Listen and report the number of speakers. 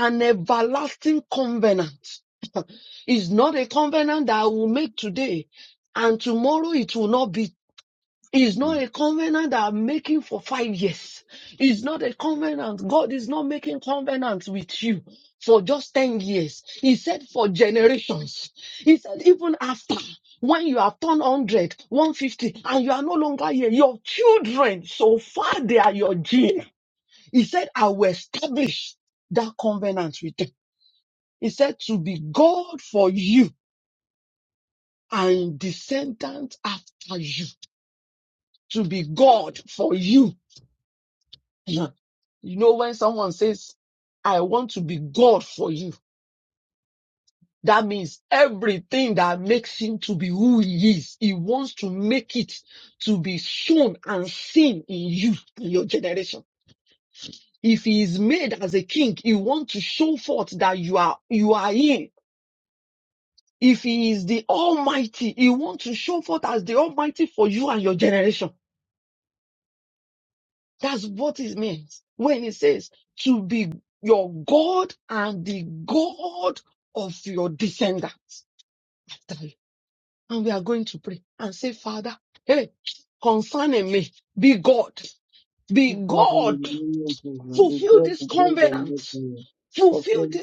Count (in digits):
2